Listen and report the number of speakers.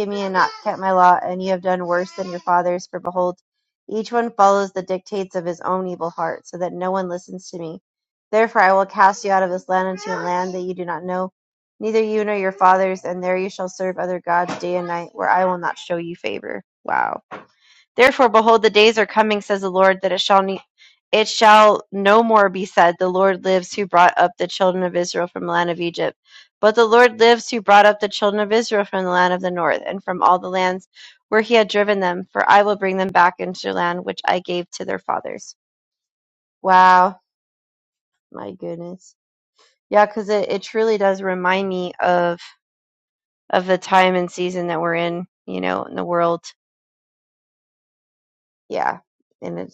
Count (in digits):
1